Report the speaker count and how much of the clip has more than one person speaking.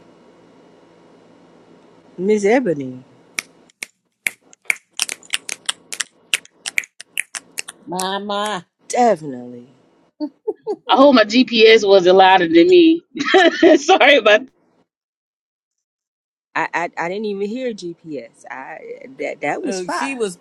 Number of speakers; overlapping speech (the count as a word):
three, about 3%